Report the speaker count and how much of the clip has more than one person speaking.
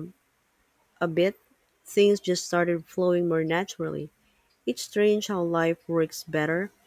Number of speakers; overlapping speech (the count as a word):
one, no overlap